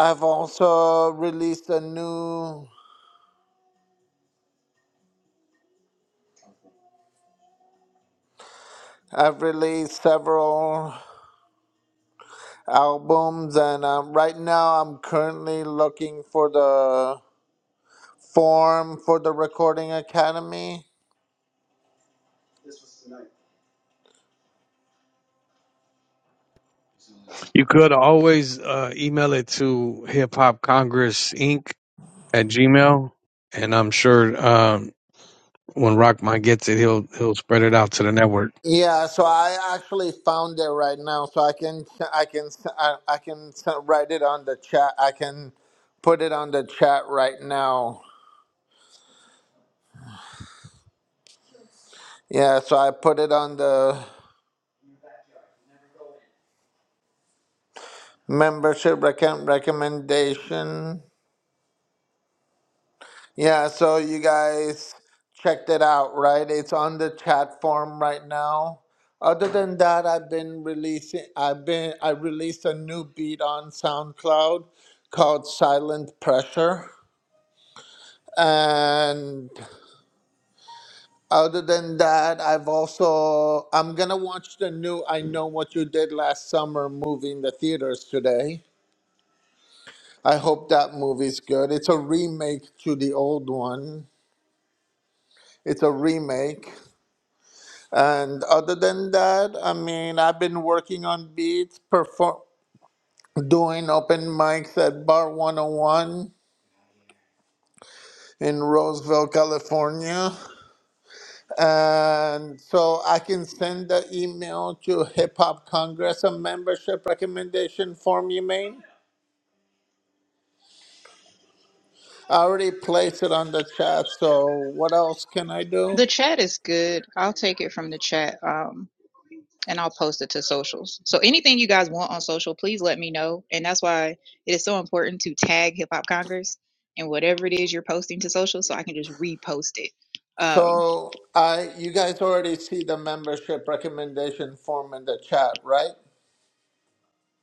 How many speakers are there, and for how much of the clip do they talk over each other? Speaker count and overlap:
3, under 1%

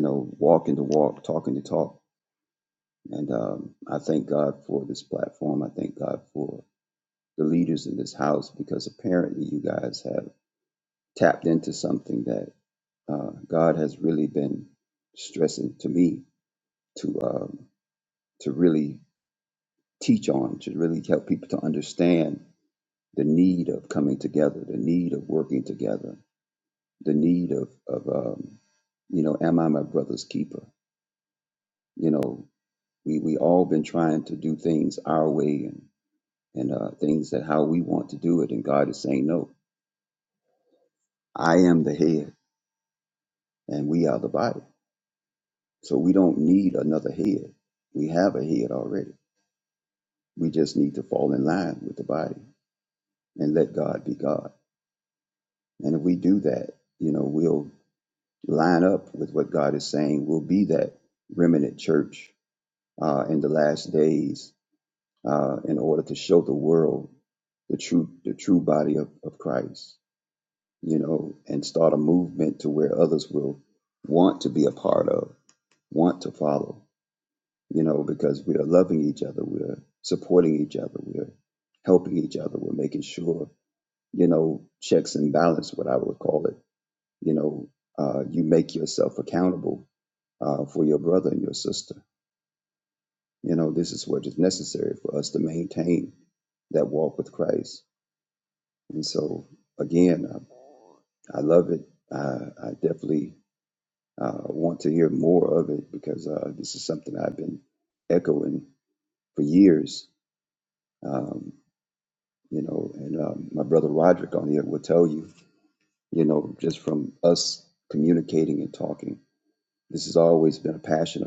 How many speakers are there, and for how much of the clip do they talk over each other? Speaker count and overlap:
1, no overlap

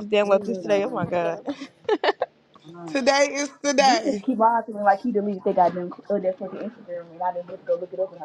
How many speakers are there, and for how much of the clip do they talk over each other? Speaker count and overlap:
3, about 15%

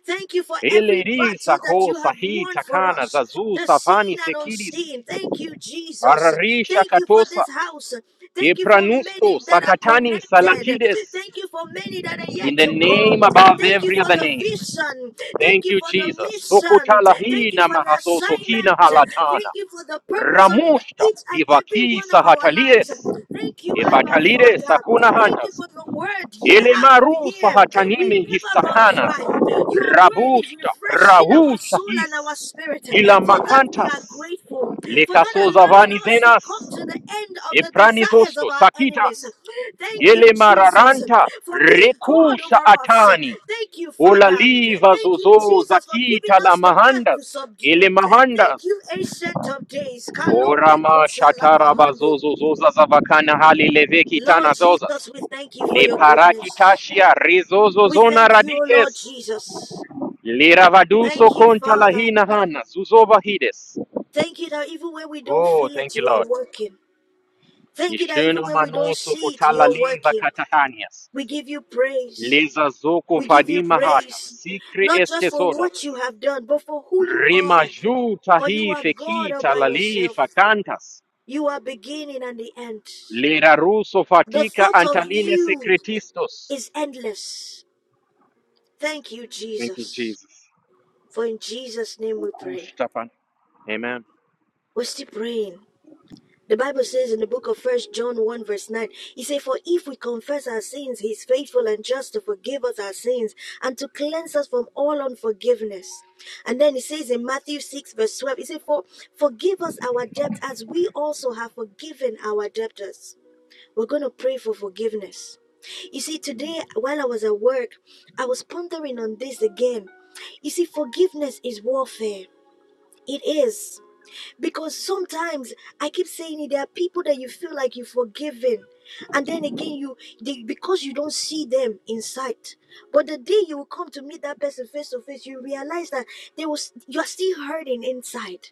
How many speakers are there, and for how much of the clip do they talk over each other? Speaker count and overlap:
2, about 34%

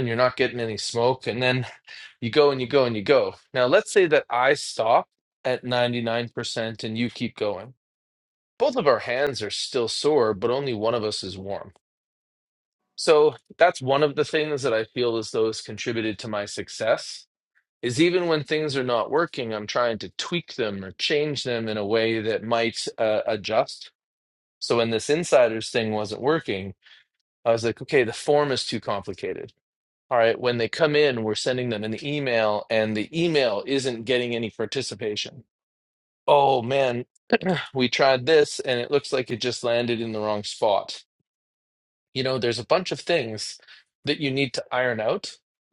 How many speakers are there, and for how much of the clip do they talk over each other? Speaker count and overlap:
1, no overlap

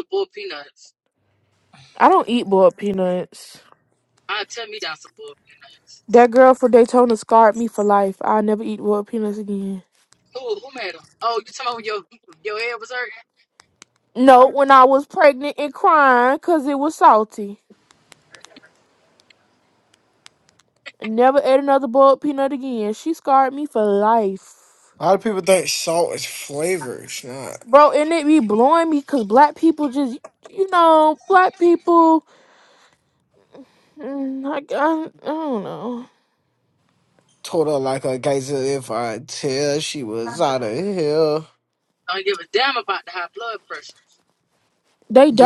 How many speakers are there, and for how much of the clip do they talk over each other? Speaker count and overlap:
3, under 1%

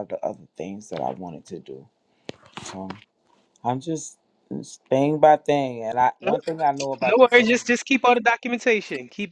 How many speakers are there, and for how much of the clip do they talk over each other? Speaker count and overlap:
2, about 8%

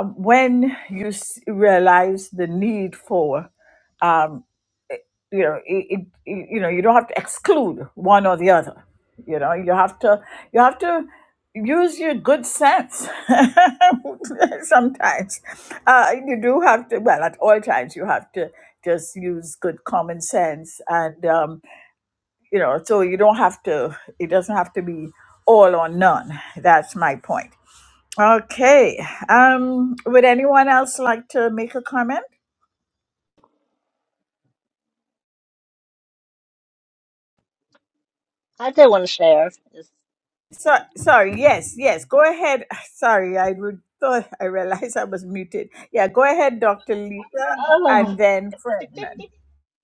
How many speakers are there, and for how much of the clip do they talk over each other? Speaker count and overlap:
2, about 1%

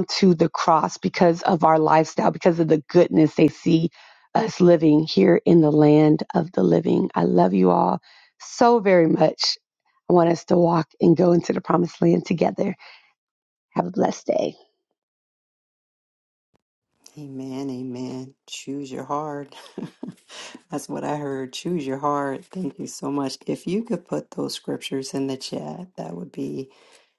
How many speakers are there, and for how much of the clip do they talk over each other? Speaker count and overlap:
2, no overlap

